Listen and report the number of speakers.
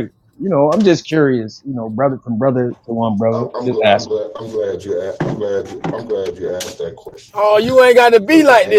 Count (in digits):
3